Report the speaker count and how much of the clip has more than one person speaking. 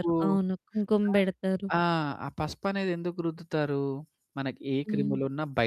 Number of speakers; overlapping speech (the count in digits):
2, about 11%